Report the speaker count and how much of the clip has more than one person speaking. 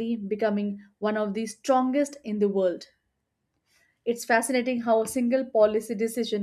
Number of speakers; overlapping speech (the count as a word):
one, no overlap